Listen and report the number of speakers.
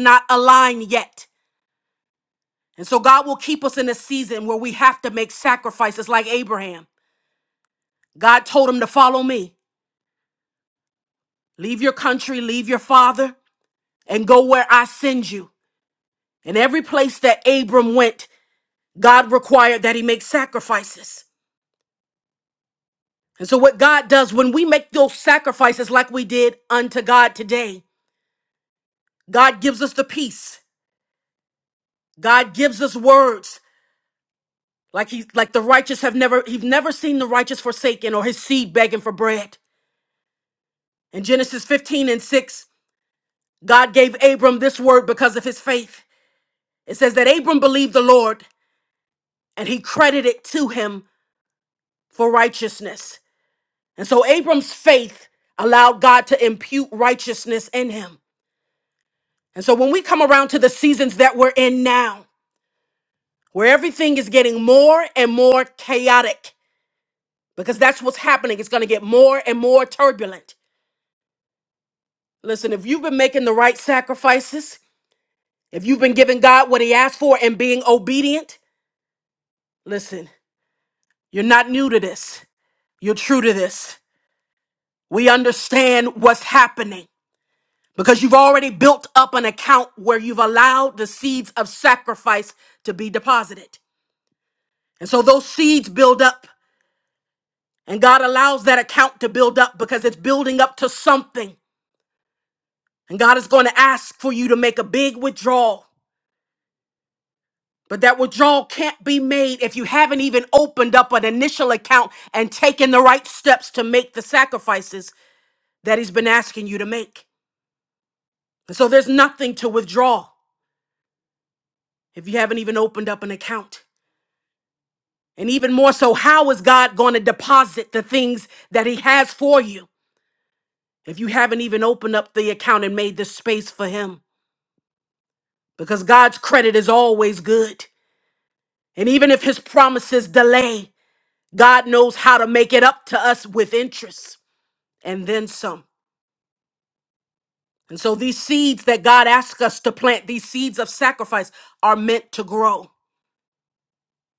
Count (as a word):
one